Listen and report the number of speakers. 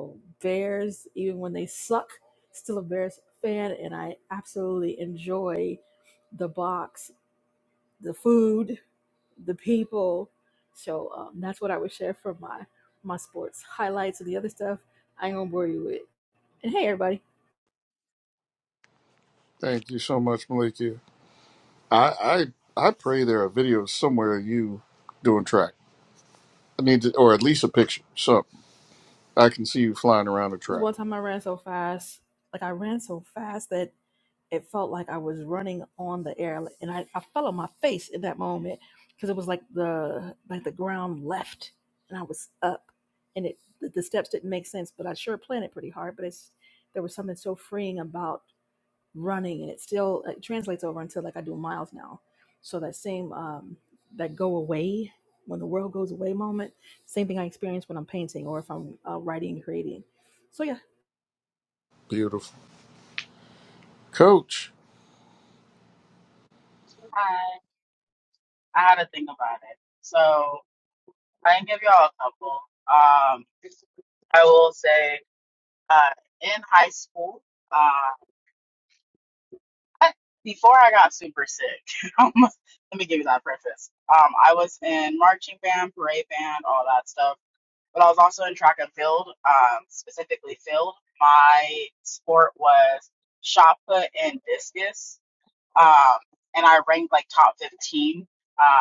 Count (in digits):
3